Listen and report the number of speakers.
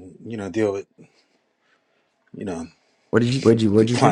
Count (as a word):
two